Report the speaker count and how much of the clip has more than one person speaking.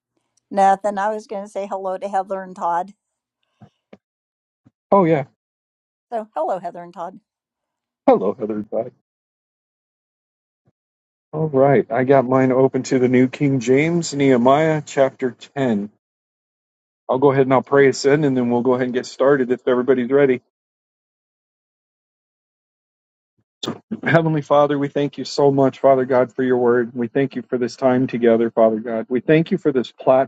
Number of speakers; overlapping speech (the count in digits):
2, no overlap